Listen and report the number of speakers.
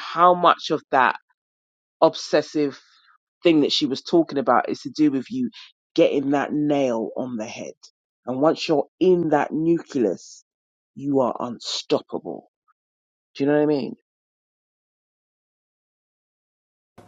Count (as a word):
one